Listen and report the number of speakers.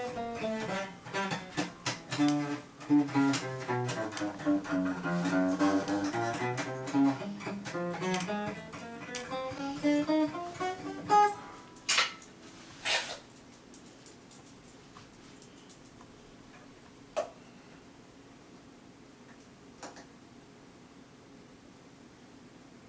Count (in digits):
0